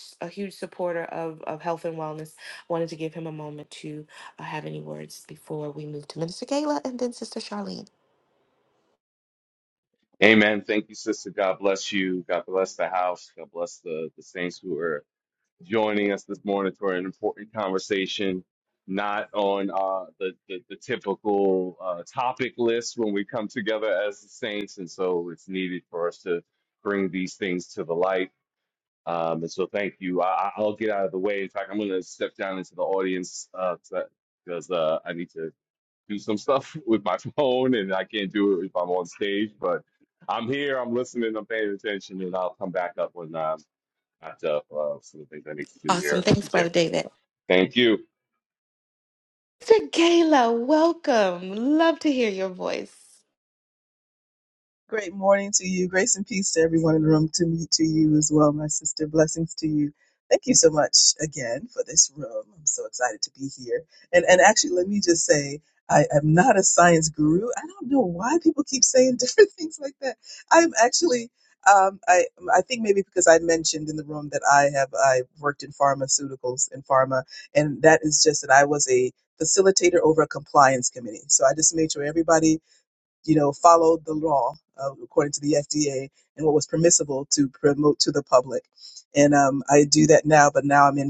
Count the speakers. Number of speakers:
three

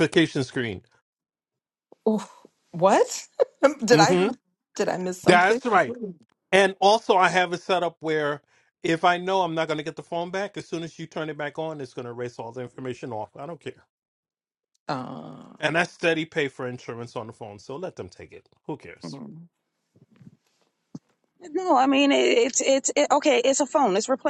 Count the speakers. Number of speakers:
three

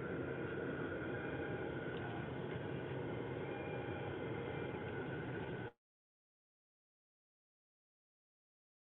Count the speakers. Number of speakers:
zero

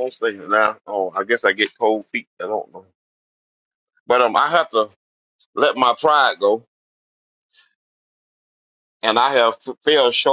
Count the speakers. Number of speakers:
one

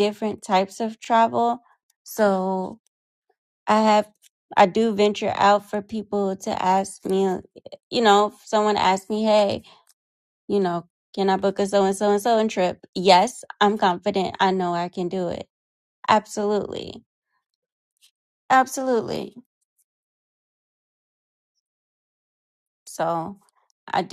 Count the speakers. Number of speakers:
one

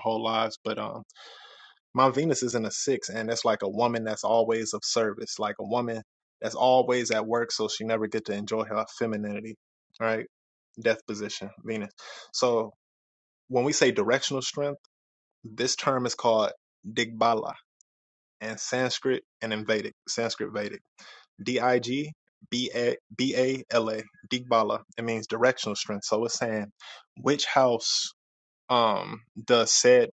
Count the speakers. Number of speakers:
one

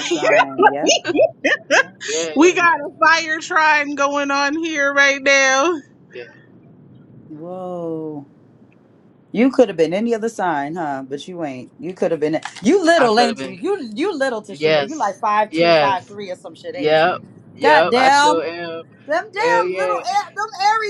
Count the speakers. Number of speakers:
three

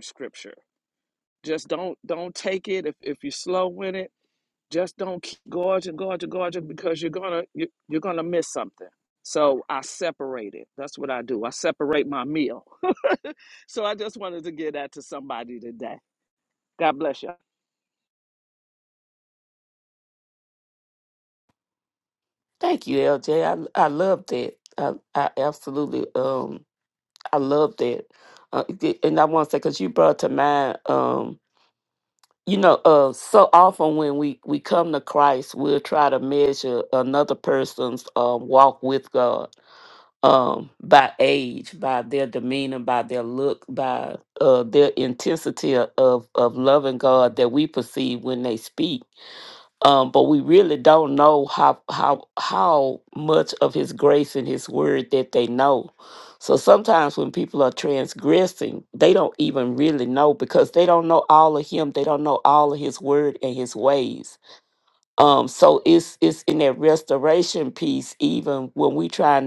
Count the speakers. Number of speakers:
two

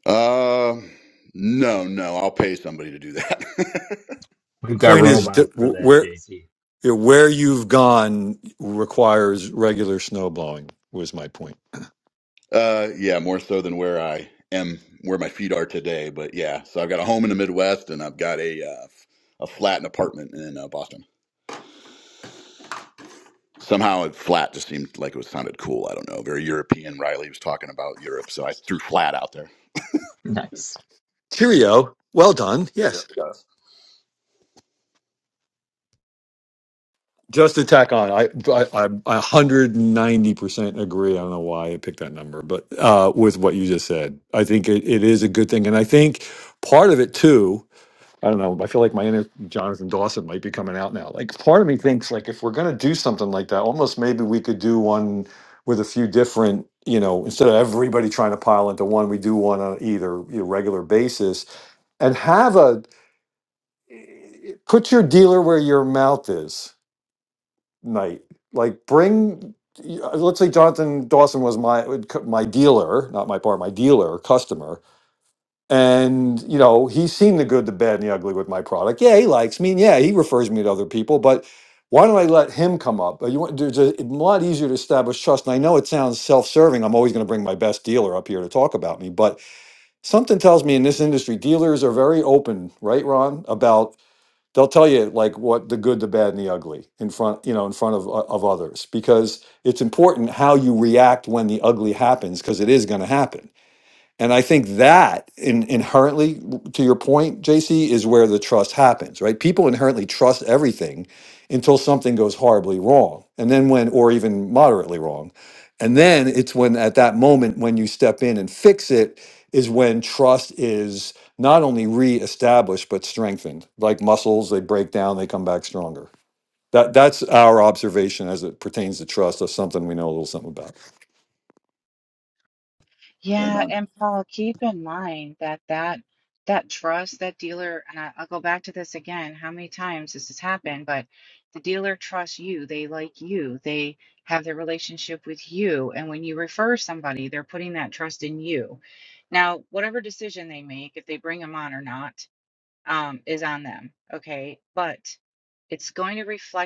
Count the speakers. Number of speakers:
four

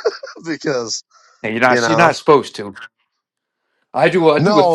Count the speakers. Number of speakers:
two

